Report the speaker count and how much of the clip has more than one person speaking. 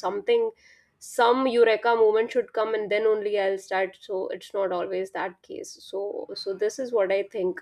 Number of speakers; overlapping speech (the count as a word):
one, no overlap